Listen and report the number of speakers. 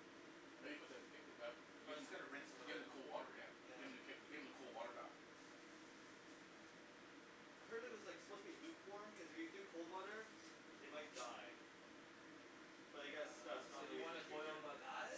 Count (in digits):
3